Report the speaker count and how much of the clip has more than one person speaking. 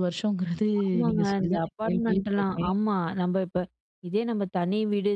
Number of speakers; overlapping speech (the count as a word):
two, about 33%